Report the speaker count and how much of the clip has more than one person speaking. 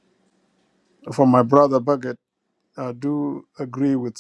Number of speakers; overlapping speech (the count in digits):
1, no overlap